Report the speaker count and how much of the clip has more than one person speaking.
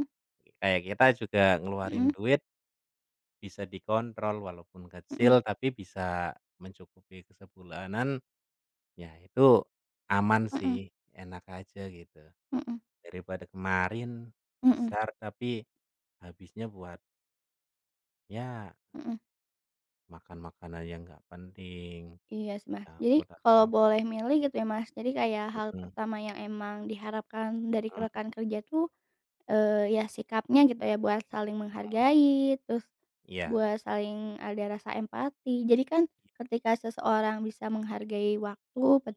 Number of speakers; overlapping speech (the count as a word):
two, about 6%